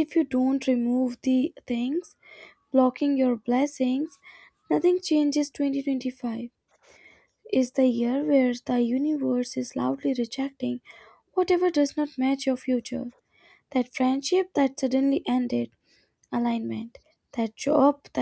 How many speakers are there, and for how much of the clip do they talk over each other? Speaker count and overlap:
1, no overlap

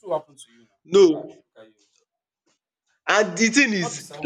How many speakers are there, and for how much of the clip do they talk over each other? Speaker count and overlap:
2, about 13%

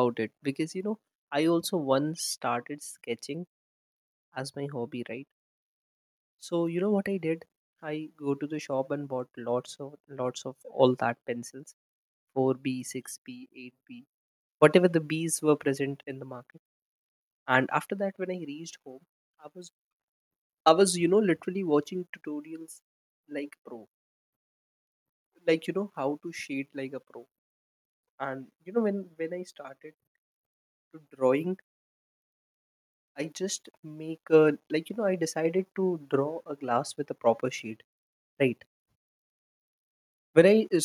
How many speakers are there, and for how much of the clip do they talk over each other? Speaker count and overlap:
1, no overlap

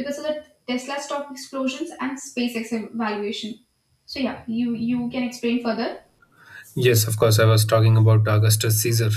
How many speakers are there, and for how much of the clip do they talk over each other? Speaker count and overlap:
2, no overlap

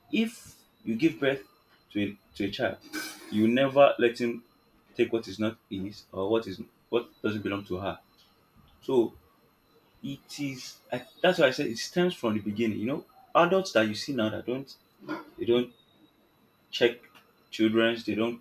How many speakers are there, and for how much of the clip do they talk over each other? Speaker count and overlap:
1, no overlap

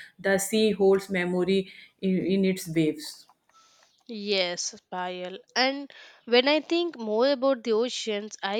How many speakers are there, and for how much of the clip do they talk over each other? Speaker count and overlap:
2, no overlap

